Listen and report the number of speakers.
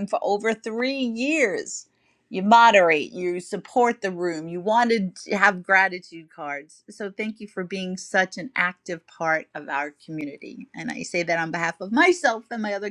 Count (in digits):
1